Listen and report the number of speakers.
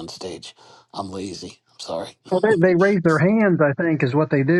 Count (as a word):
two